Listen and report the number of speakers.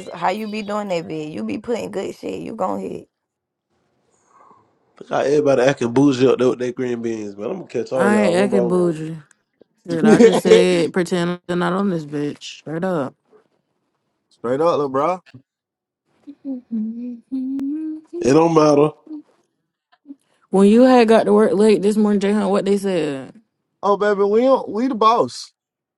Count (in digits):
4